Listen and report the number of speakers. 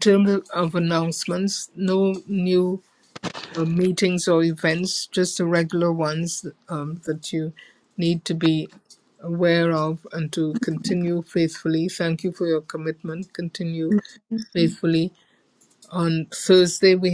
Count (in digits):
1